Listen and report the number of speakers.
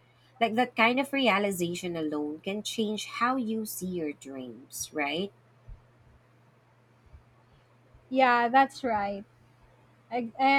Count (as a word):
two